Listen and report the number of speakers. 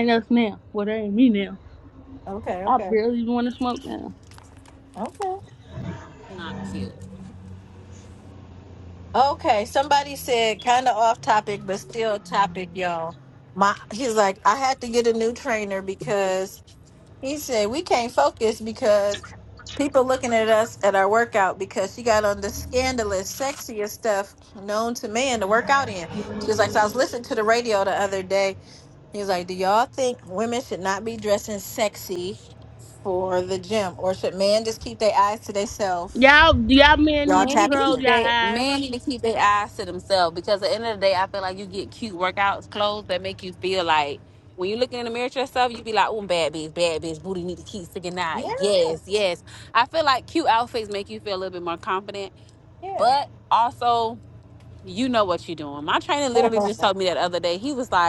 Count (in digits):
3